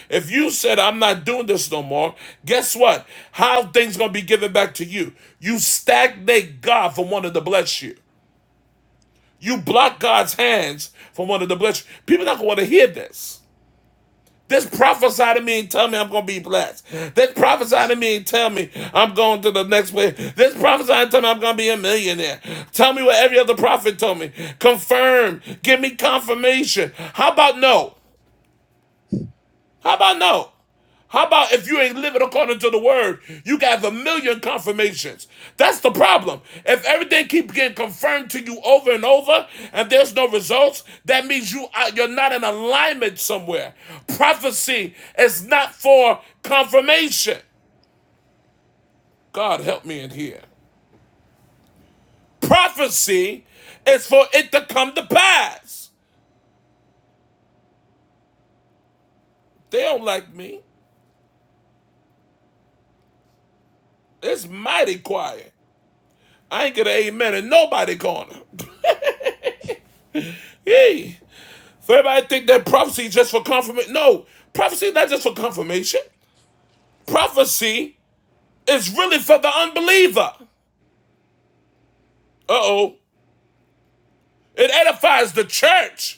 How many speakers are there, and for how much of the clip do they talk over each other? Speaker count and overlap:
1, no overlap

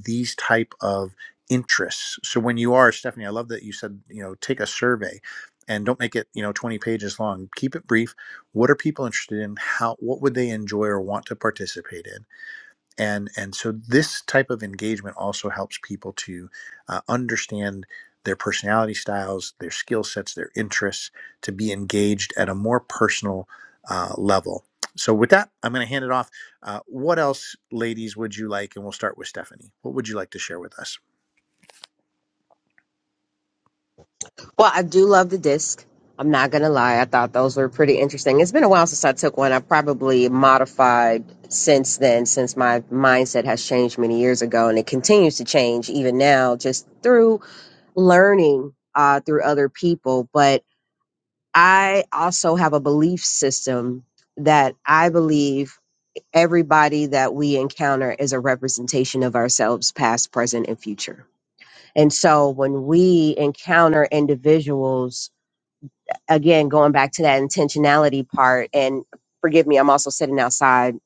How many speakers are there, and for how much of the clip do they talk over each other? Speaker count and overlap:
2, no overlap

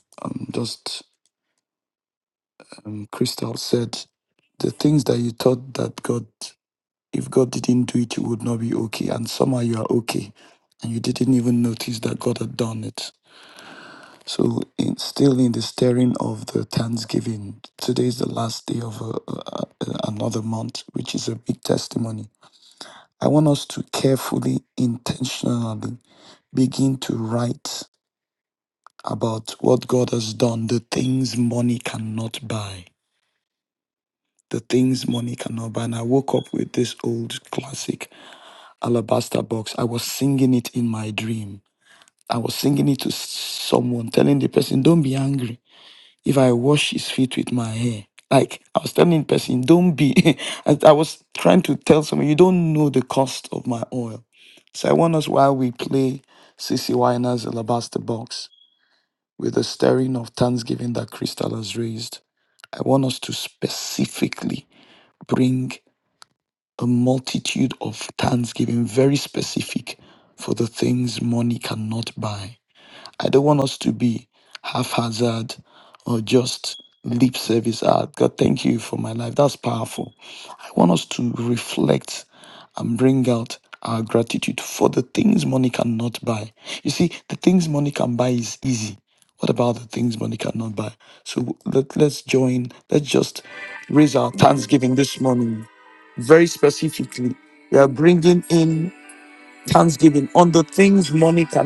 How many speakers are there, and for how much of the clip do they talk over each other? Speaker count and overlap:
1, no overlap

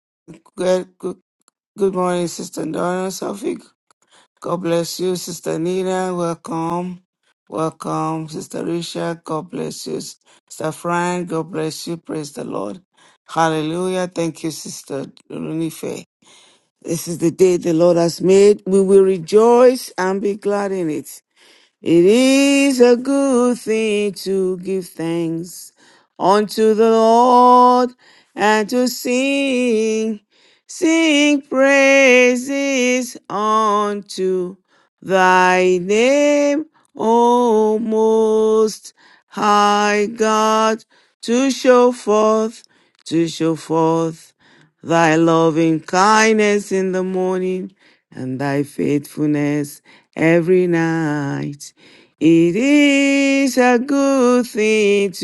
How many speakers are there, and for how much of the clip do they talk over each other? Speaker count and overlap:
1, no overlap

